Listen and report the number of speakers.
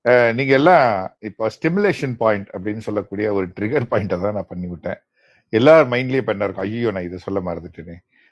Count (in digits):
1